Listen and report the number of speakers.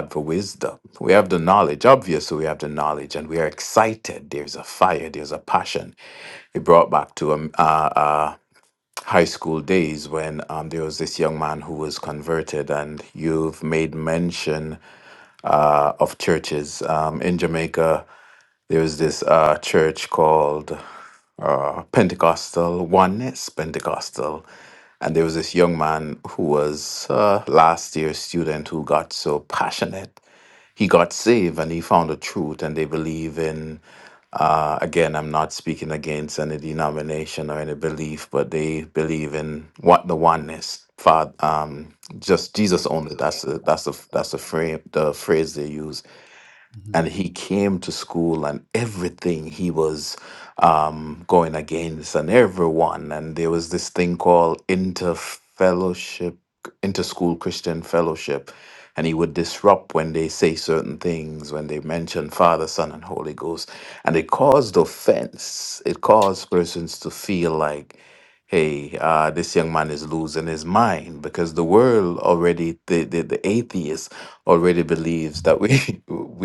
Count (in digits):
1